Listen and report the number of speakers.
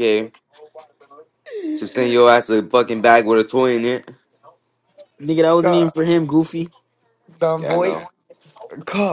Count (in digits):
3